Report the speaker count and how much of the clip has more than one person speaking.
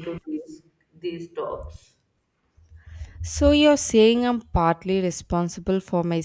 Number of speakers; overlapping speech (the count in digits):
2, no overlap